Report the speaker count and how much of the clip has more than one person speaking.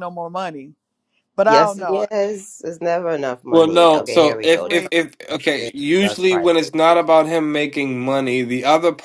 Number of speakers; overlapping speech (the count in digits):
3, about 38%